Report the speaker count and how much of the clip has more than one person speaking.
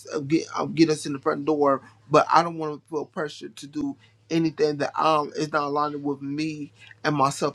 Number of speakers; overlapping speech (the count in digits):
1, no overlap